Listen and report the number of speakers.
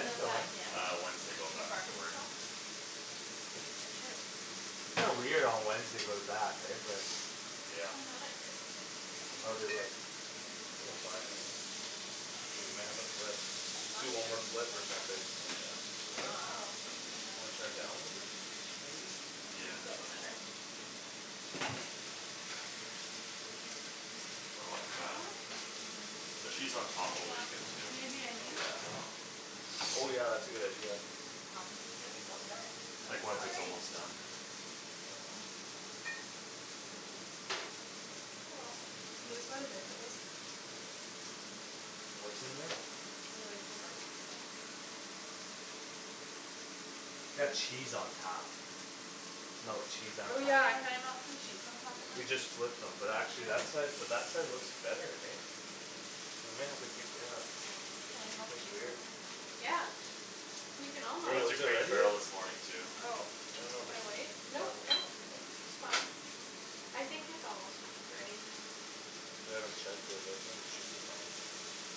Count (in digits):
4